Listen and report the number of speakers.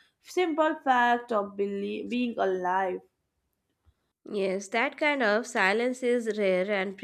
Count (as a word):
two